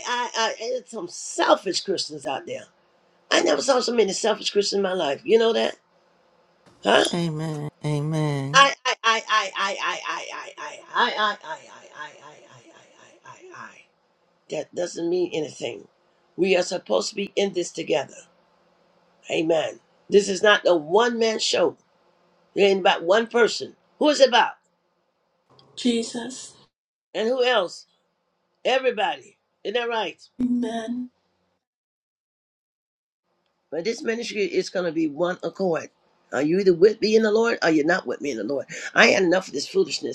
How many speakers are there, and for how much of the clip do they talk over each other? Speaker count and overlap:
three, under 1%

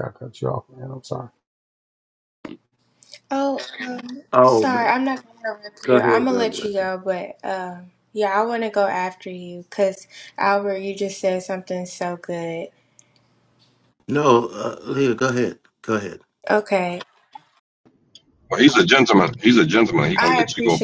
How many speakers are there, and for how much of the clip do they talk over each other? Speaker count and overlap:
four, about 10%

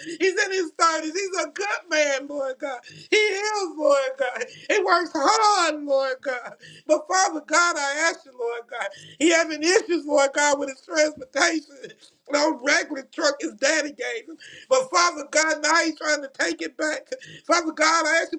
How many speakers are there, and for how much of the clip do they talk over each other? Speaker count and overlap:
one, no overlap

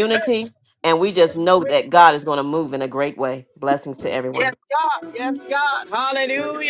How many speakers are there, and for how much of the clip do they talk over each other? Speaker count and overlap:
two, about 2%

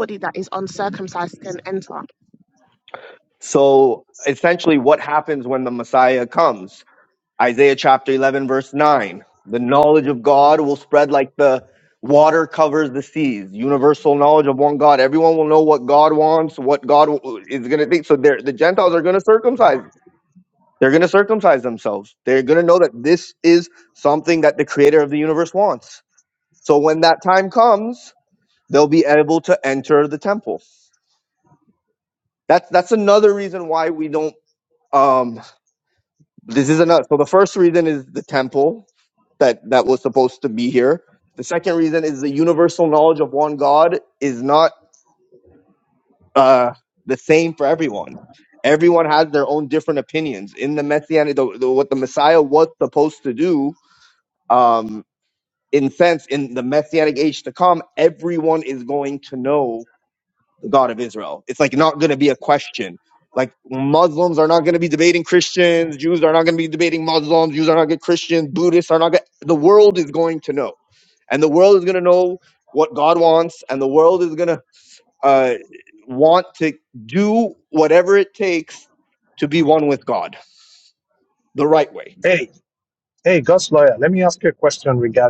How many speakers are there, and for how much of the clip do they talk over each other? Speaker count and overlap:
three, no overlap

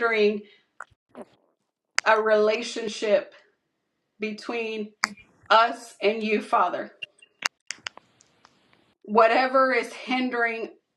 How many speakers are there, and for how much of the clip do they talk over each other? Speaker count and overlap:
one, no overlap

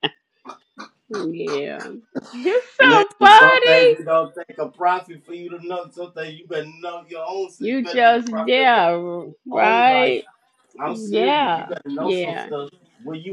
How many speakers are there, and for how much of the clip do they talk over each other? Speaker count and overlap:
two, about 36%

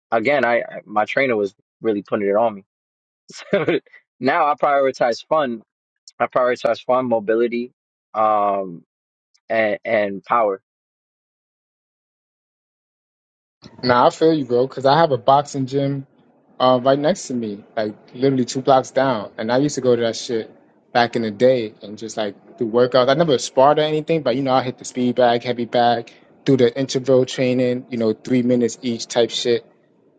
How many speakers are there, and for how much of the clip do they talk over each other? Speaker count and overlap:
two, no overlap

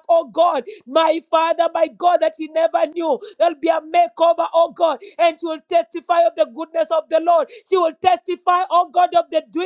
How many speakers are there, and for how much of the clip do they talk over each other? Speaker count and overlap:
one, no overlap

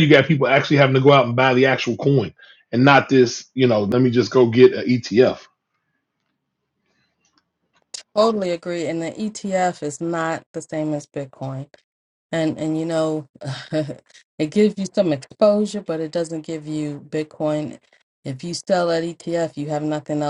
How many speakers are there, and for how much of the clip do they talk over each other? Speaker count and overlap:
two, no overlap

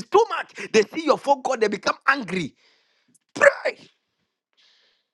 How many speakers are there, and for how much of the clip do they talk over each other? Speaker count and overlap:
one, no overlap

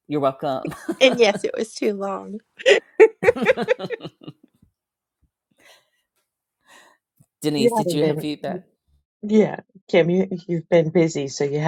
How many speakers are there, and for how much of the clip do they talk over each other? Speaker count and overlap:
three, about 9%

